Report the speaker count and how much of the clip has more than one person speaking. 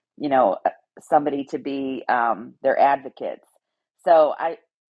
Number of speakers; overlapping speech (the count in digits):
1, no overlap